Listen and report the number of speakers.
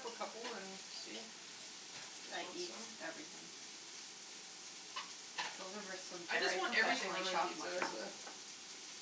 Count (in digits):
2